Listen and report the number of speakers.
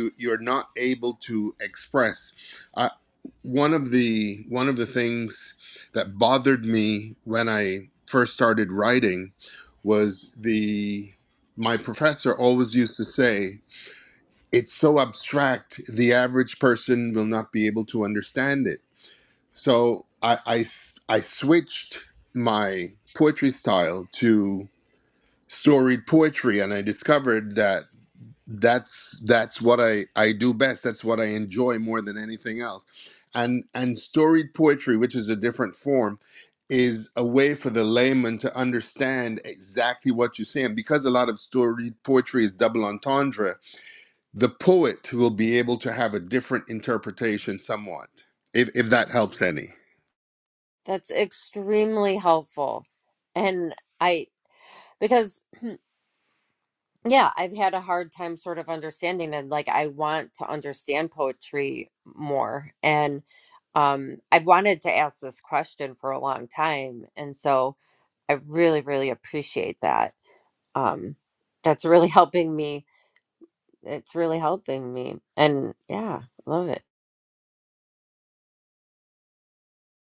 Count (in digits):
2